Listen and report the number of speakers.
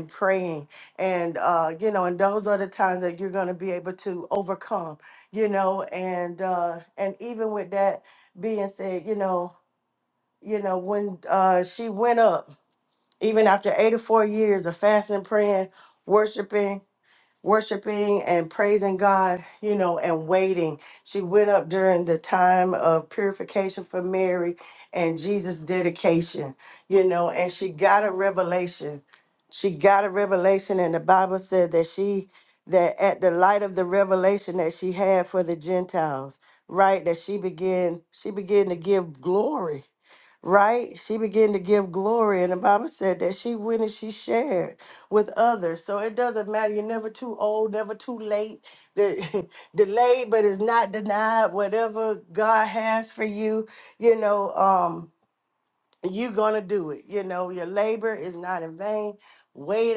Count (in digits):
1